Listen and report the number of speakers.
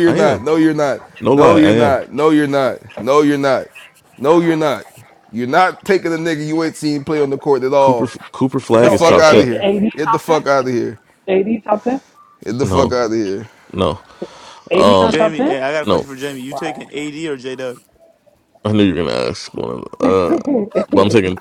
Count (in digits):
4